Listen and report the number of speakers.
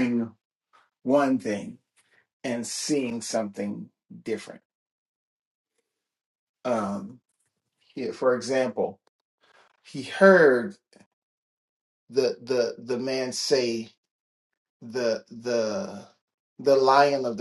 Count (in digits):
1